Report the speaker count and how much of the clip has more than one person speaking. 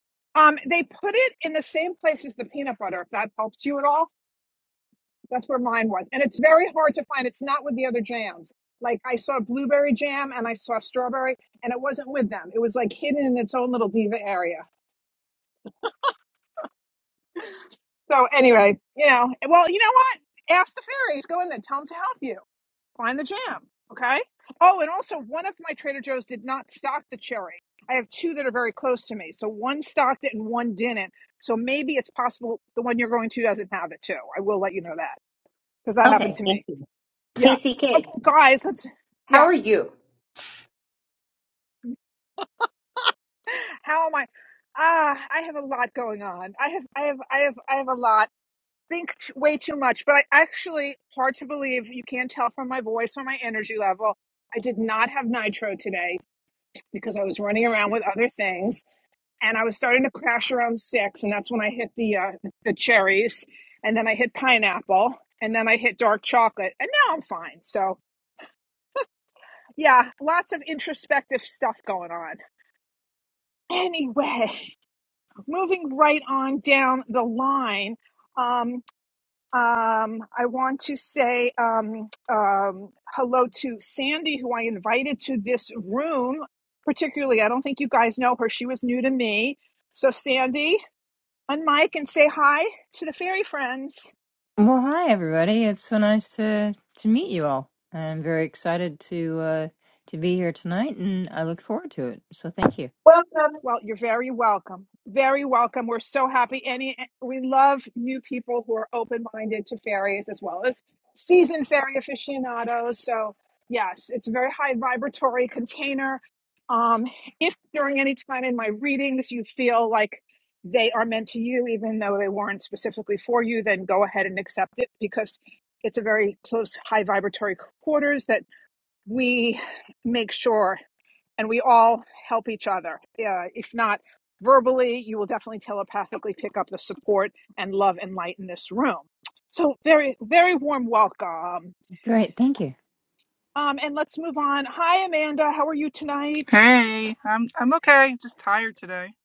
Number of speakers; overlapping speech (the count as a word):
four, about 1%